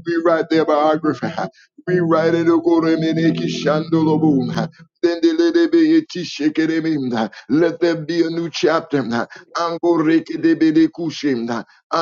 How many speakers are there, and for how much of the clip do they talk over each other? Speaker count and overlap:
one, no overlap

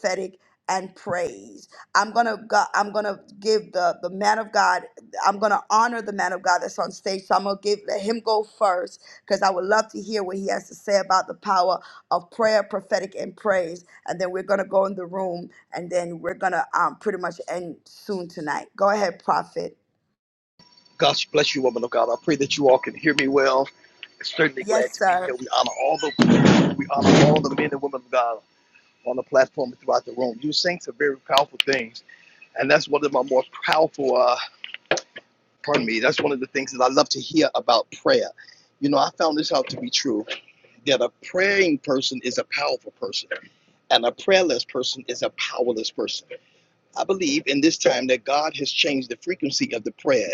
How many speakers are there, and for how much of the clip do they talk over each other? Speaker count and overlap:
two, about 1%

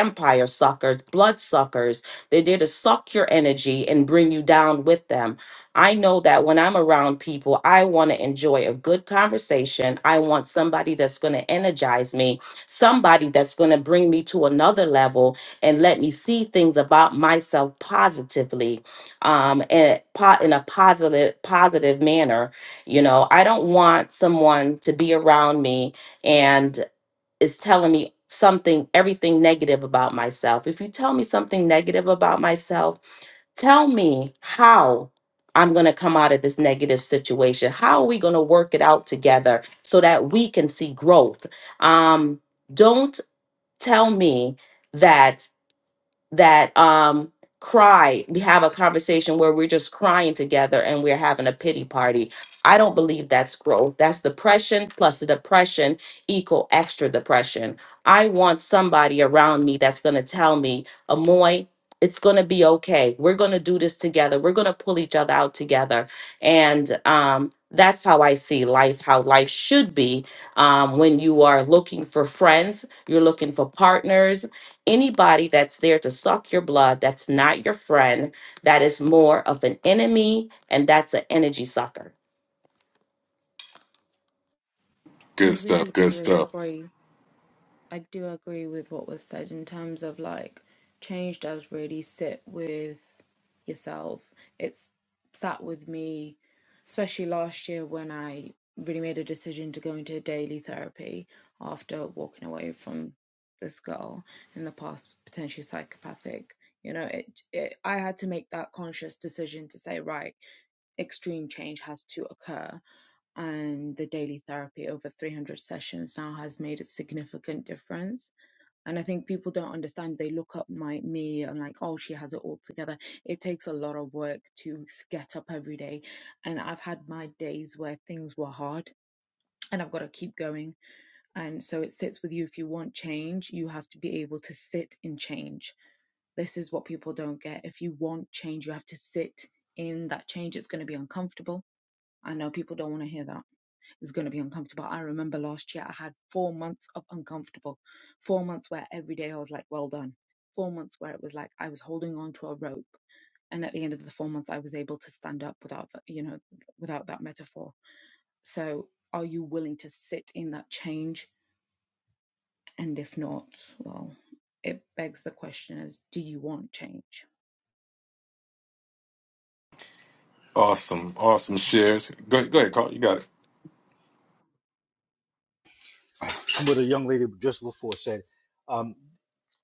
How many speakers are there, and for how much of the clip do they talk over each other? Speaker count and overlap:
four, about 1%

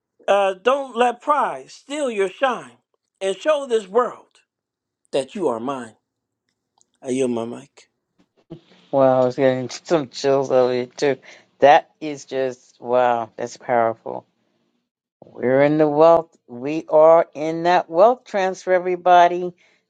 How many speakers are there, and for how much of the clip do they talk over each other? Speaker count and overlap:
two, no overlap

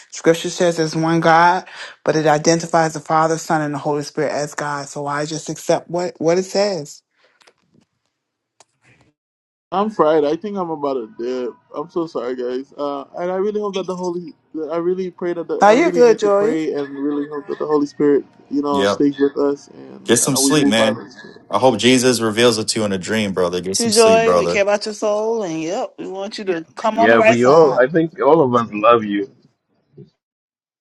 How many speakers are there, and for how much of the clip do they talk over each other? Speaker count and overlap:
four, about 12%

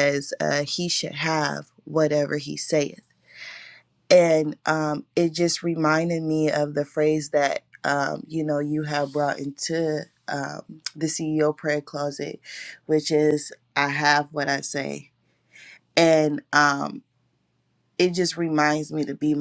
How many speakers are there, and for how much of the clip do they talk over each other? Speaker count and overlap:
one, no overlap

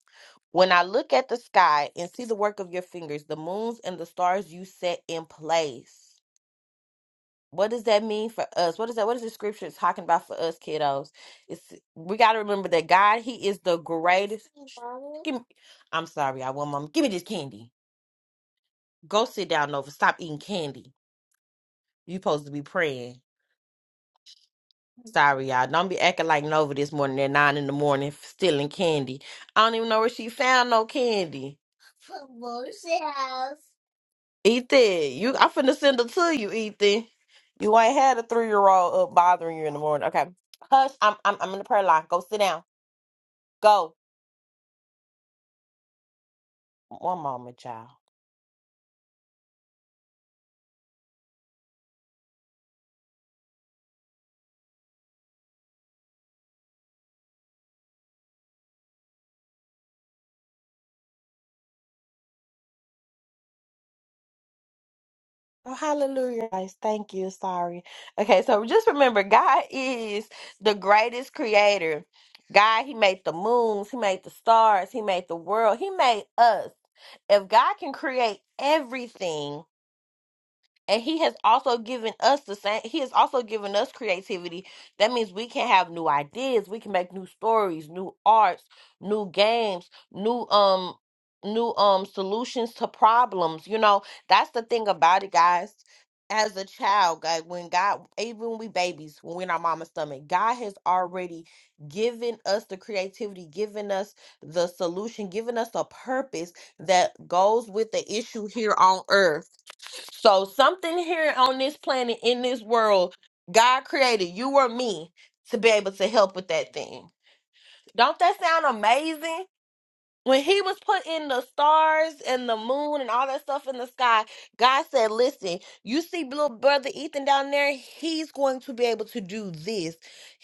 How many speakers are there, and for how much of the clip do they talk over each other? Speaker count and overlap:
one, no overlap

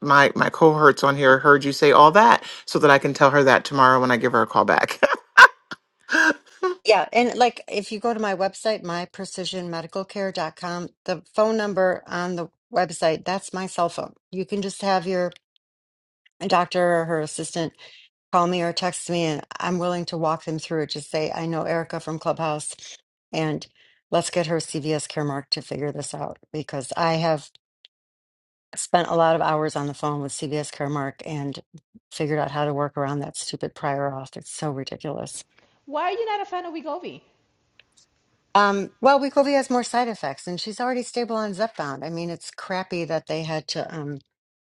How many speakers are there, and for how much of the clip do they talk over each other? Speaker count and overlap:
three, no overlap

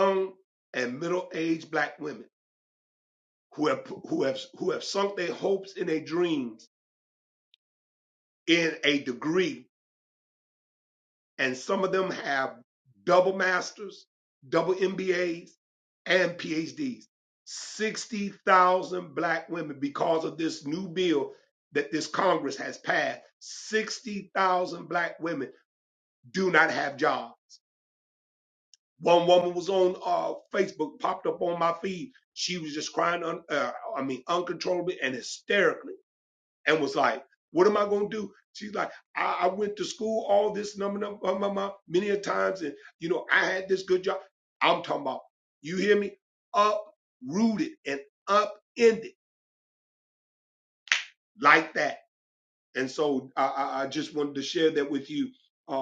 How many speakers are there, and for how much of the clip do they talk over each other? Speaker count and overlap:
one, no overlap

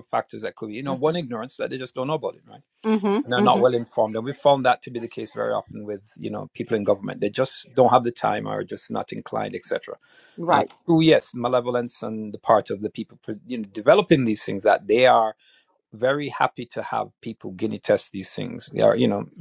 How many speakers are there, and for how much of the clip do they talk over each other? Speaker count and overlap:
two, about 5%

